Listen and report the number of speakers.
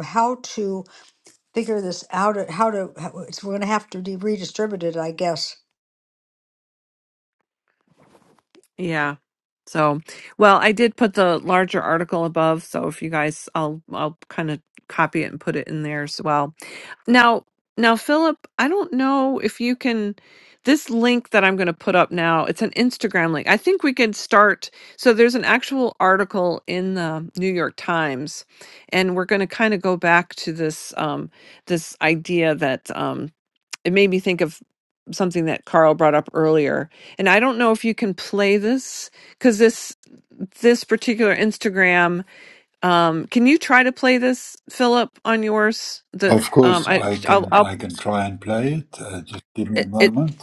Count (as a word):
three